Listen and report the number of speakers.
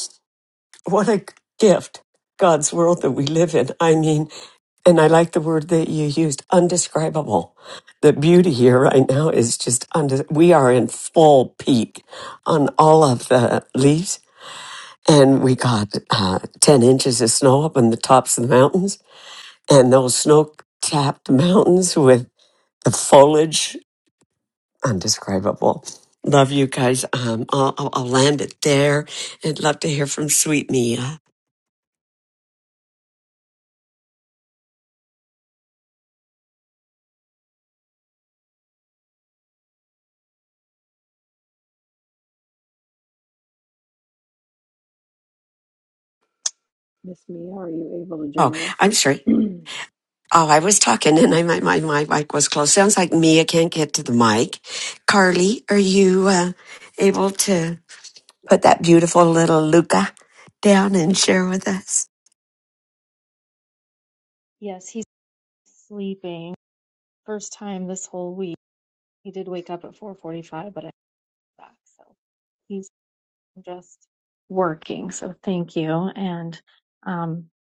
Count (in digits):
3